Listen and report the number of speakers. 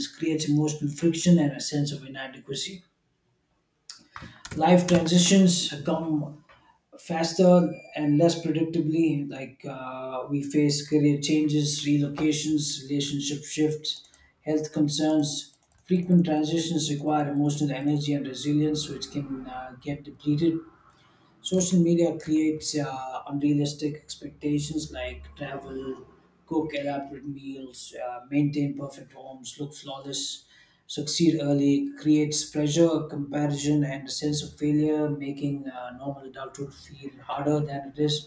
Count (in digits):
1